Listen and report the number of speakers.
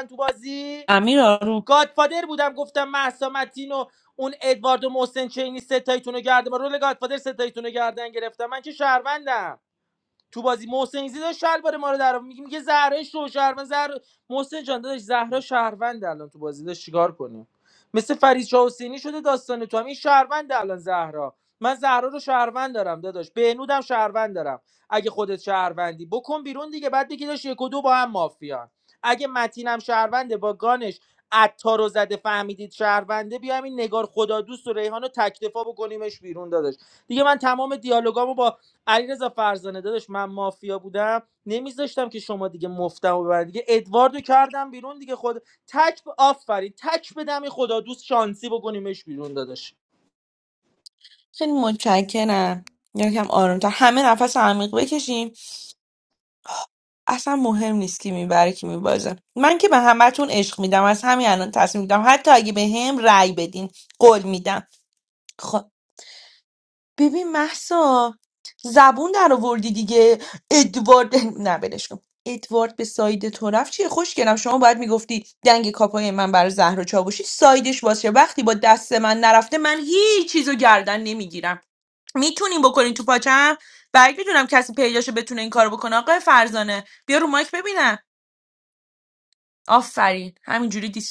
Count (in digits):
2